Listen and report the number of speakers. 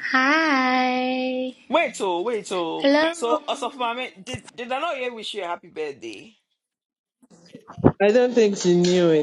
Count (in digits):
3